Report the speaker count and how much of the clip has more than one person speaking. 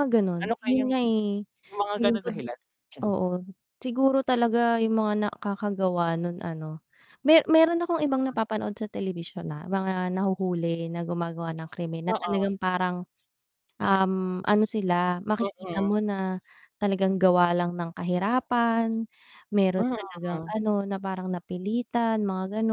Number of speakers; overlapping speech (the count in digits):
2, about 12%